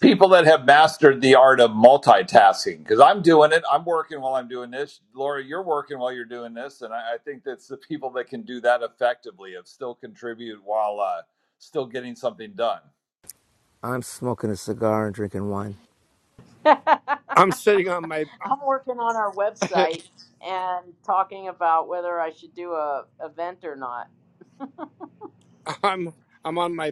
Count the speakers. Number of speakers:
4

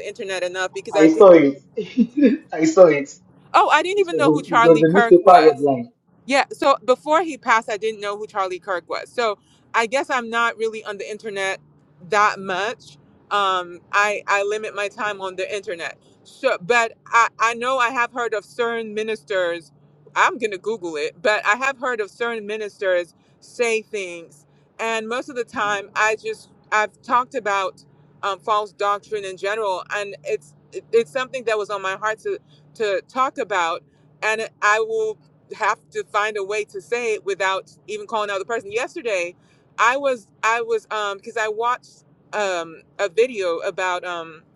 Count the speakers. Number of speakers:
2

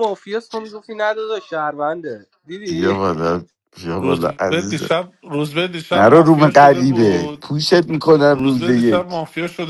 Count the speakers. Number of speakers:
3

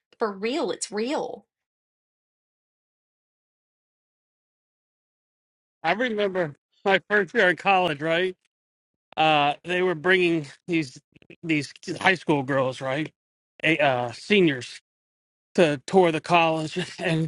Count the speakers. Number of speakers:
2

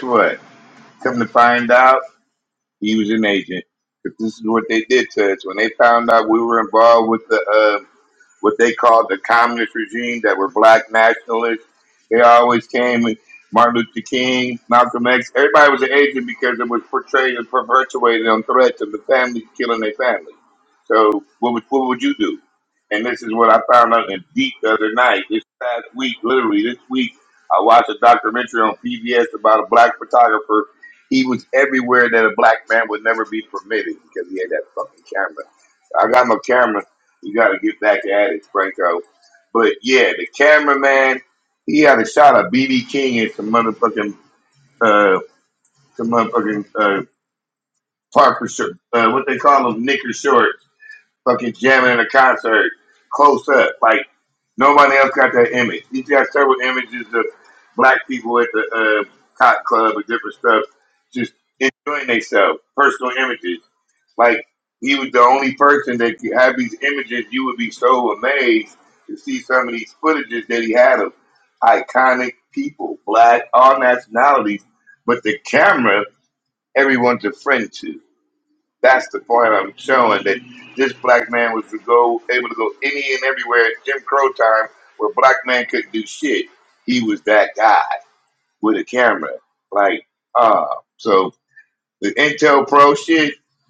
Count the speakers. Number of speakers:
1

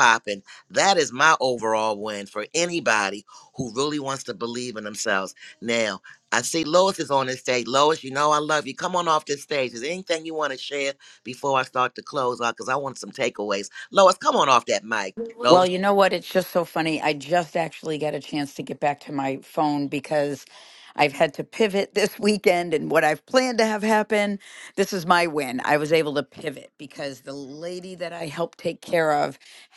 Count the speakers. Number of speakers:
2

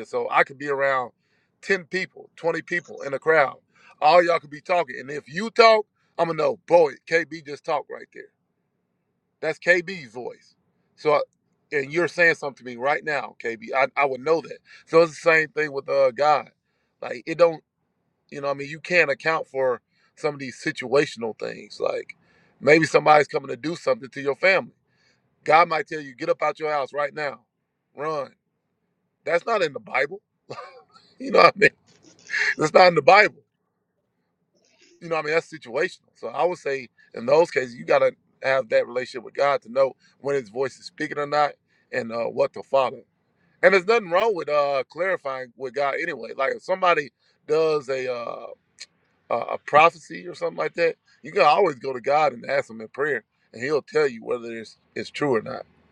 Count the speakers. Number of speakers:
1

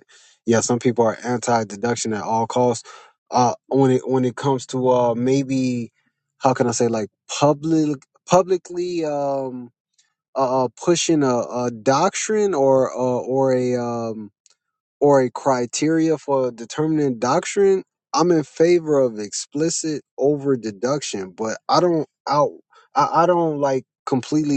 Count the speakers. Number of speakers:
1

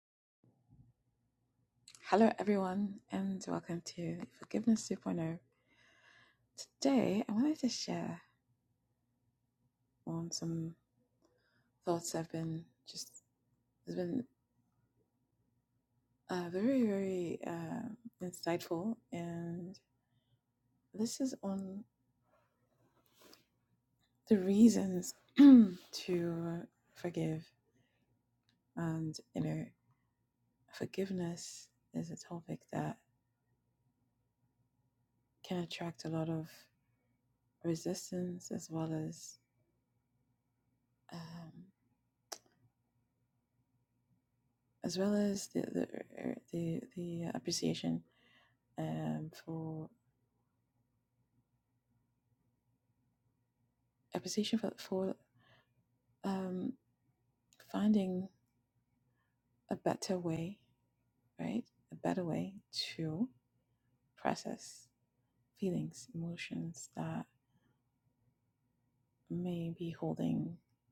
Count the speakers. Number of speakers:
1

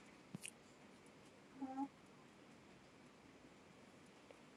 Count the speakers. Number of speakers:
0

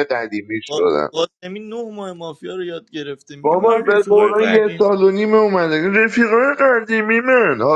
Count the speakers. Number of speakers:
2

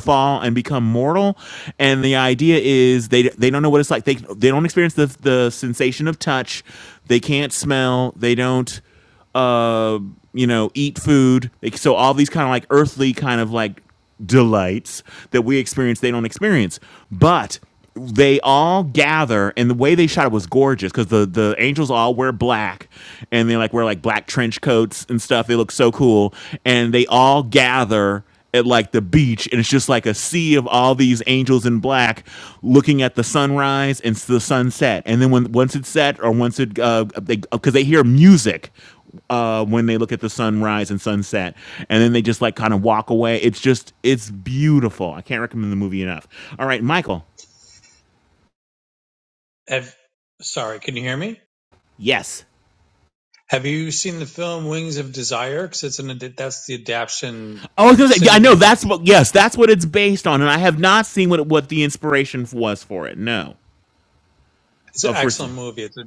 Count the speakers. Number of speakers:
2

